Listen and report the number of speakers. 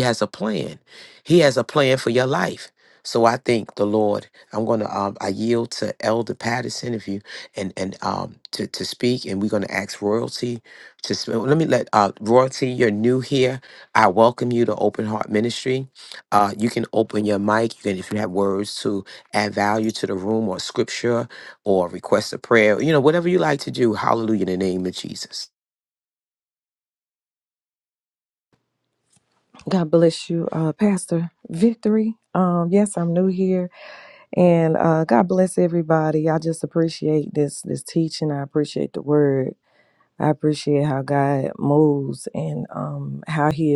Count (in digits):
2